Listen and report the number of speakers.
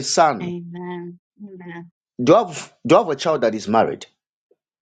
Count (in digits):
2